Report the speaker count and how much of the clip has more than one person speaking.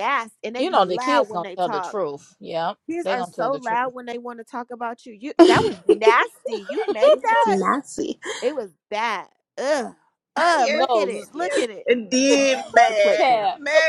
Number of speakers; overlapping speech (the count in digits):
4, about 38%